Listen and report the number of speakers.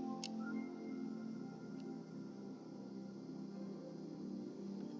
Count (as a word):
zero